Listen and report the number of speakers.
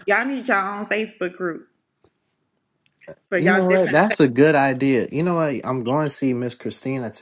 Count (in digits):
2